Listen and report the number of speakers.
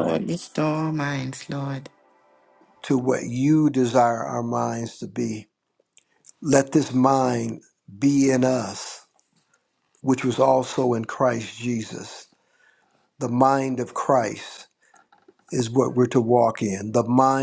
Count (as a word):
two